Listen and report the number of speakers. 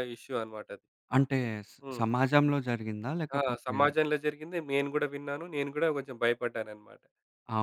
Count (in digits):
2